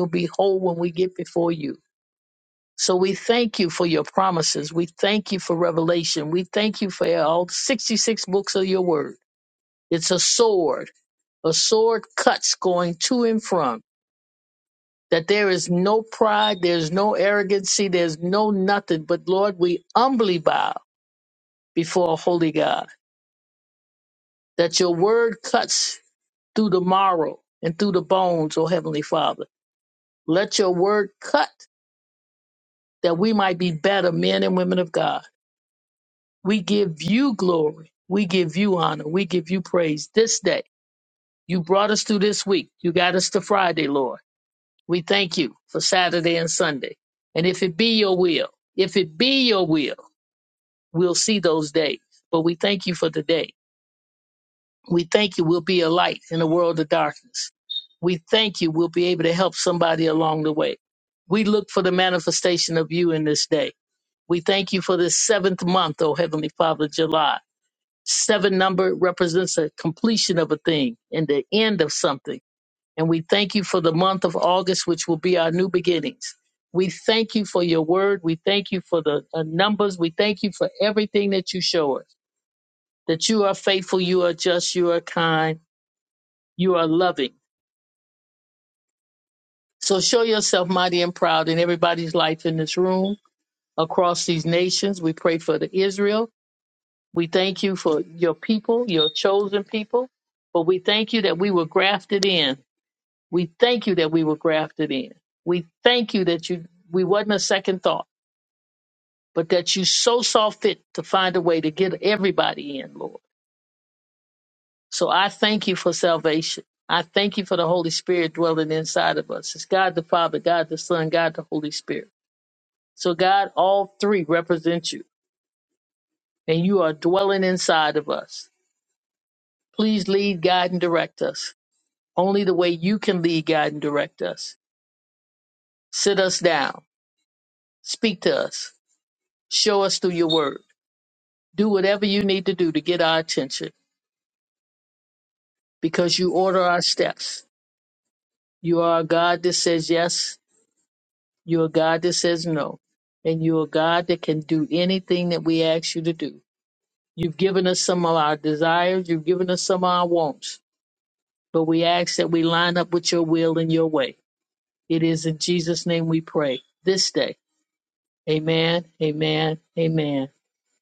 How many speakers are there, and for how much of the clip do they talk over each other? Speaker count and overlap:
1, no overlap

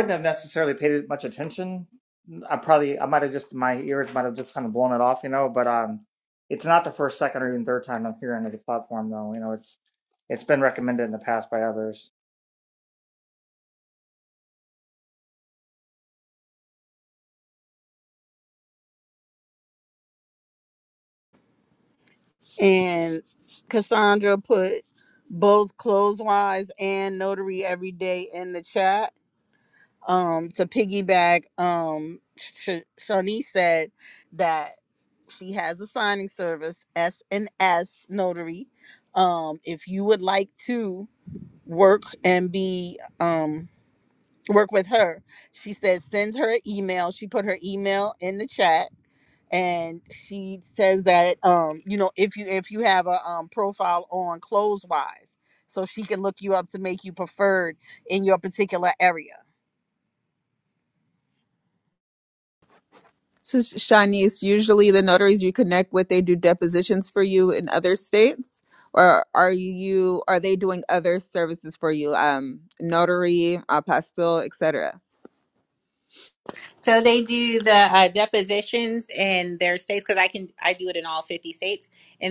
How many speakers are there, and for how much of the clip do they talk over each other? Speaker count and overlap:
4, no overlap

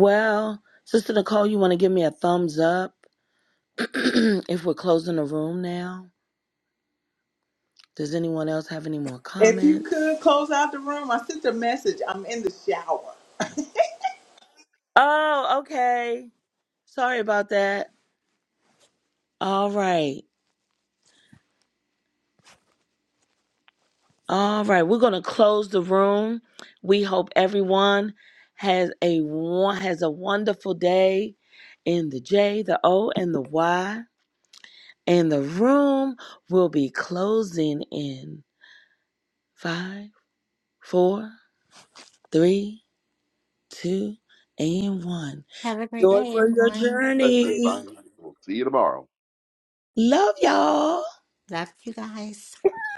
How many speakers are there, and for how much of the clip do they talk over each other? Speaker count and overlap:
4, about 4%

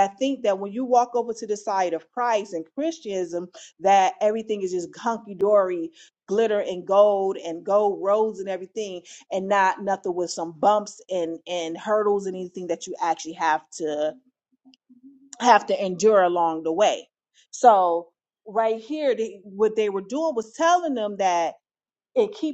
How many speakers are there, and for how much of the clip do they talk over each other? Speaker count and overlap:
1, no overlap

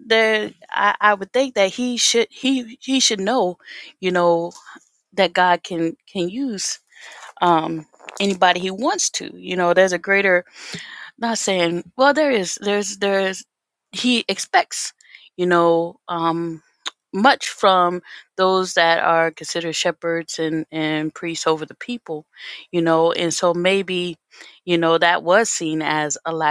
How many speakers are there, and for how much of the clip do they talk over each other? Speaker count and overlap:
1, no overlap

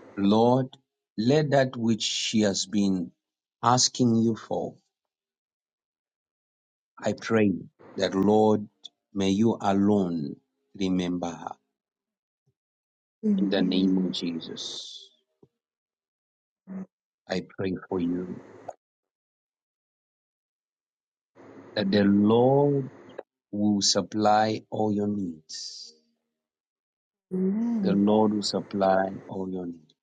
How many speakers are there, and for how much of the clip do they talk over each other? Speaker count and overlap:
2, about 3%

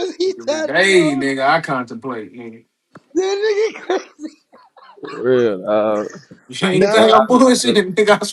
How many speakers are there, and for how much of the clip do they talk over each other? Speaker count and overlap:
3, about 23%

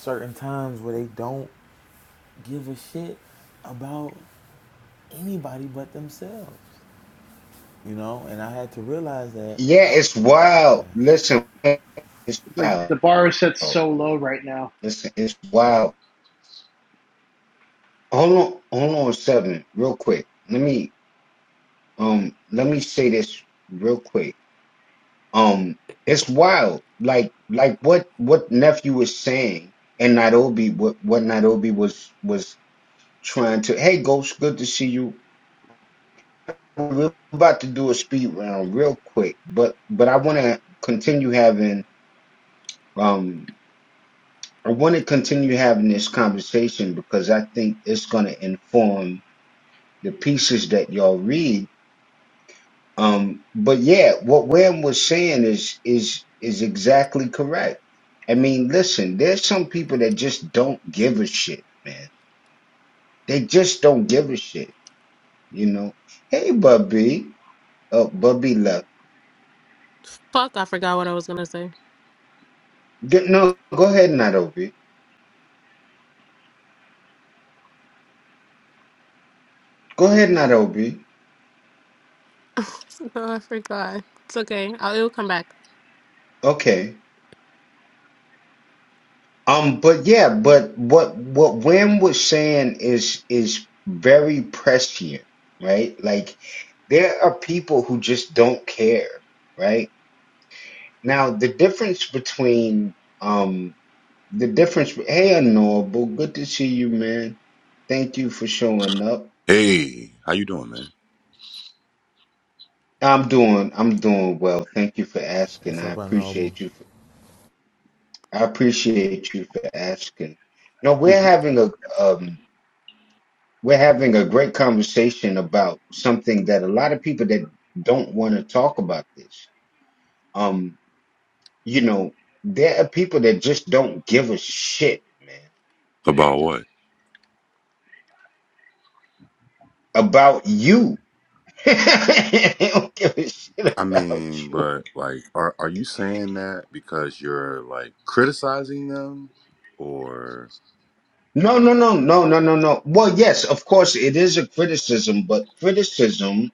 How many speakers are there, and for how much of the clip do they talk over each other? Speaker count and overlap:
5, about 1%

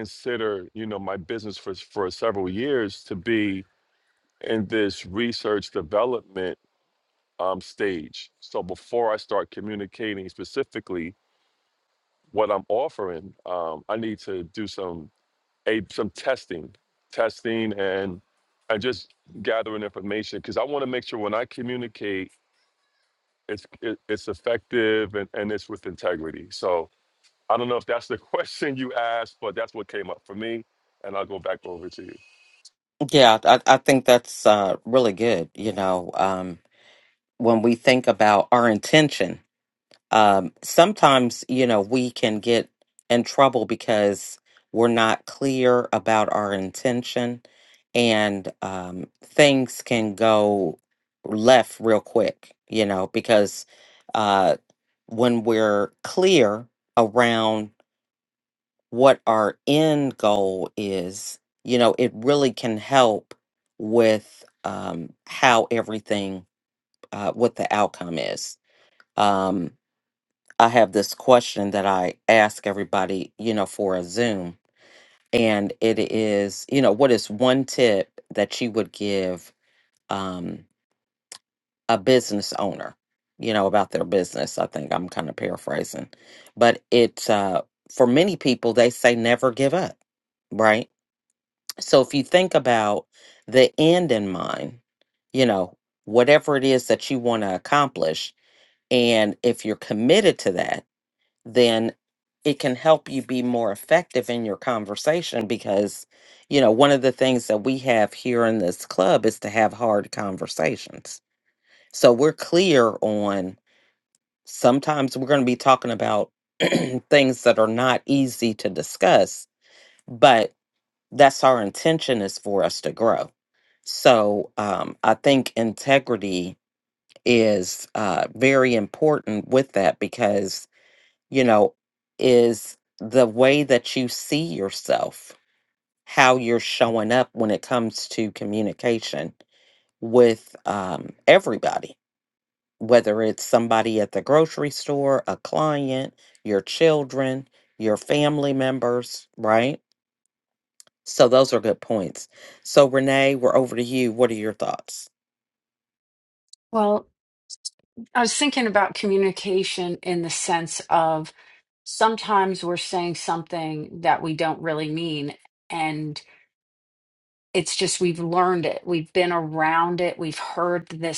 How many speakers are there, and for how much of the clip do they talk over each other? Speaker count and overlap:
3, no overlap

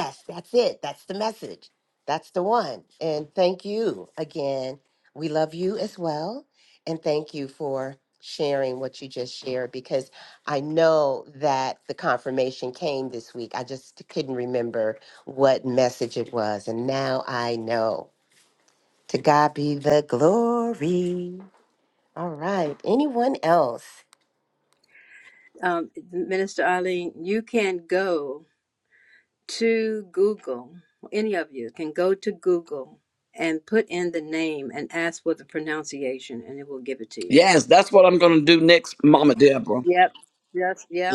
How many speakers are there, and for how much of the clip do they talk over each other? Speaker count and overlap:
3, under 1%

